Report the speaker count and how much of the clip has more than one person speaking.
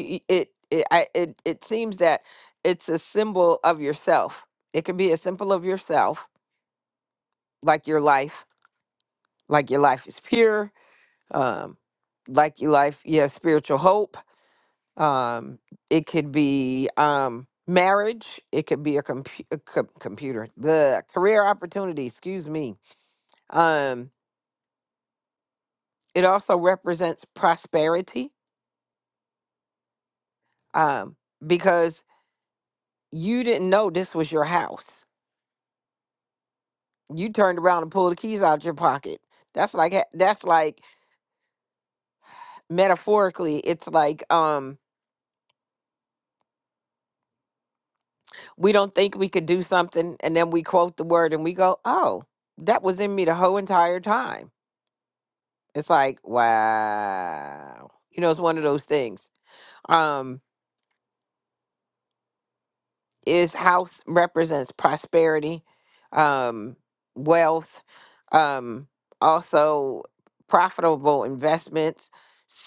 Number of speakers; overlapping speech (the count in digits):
1, no overlap